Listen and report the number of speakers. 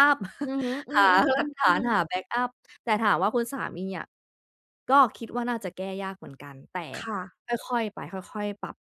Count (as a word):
two